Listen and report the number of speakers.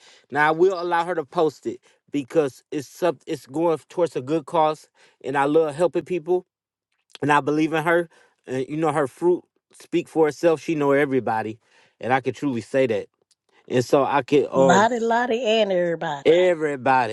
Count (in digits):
2